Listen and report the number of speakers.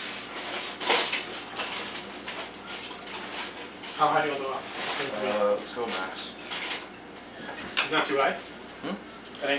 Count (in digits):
2